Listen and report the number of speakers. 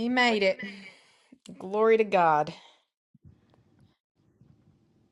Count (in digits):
1